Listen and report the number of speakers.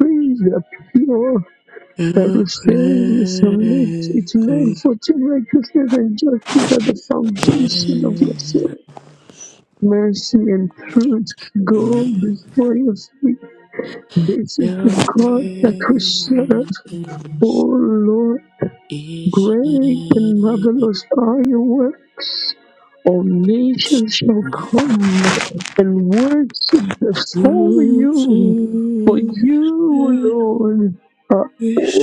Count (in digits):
2